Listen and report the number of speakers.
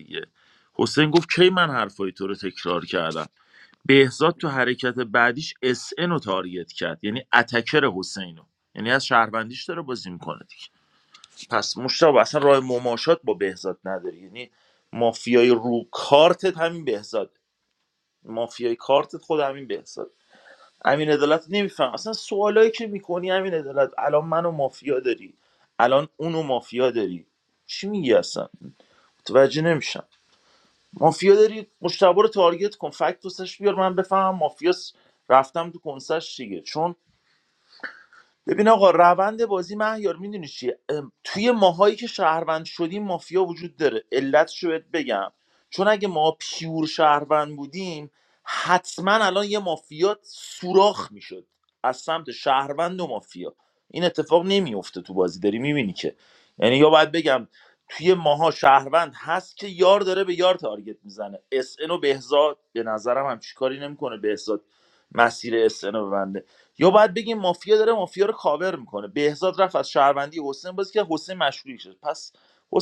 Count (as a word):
one